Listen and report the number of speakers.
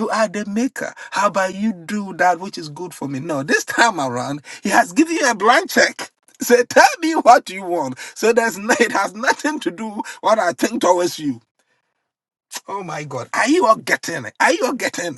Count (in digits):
1